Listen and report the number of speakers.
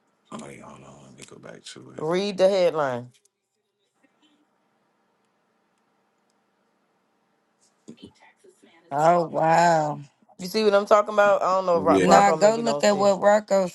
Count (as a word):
three